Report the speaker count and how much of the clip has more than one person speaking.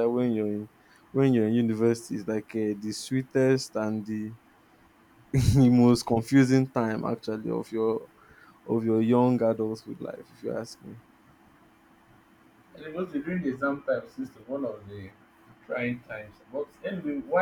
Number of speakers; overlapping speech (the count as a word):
two, no overlap